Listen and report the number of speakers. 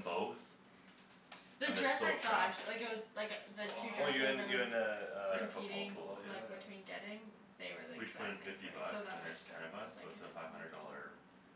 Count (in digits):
3